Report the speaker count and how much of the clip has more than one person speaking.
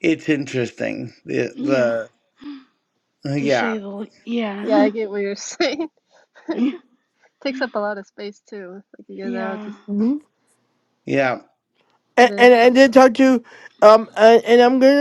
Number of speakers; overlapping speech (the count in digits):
4, about 14%